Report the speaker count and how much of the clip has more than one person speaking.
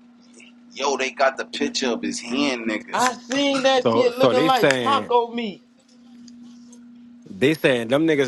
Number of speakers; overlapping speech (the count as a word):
three, about 16%